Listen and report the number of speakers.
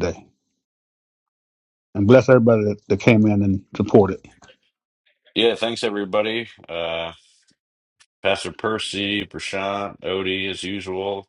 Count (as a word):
two